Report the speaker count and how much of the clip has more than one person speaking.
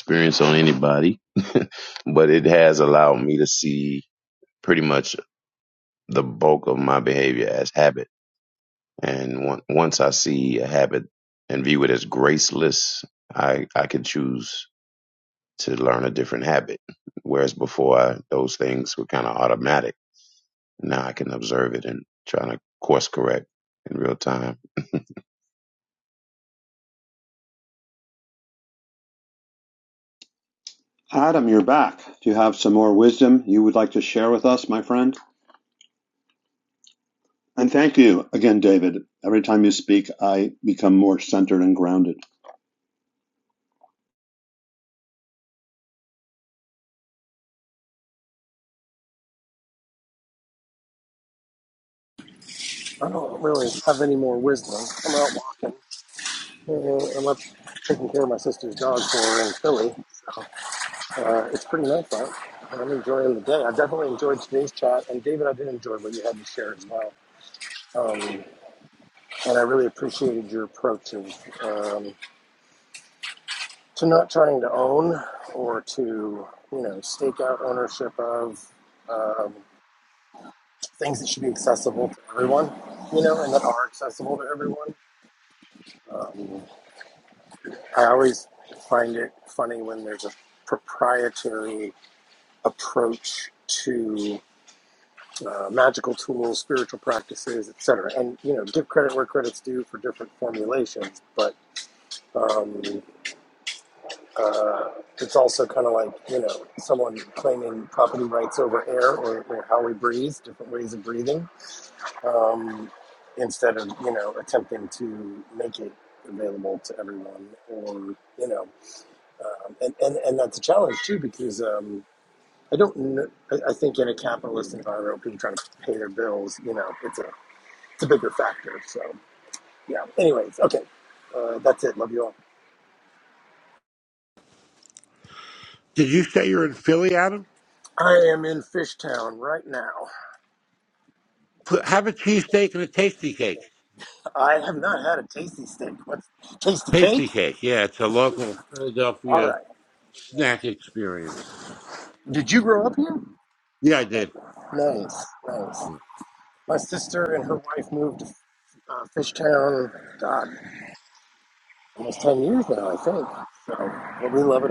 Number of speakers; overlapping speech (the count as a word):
four, under 1%